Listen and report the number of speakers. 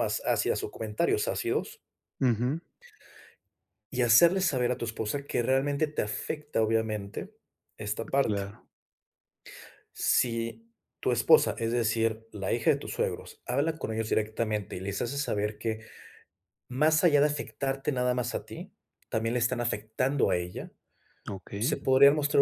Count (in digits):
2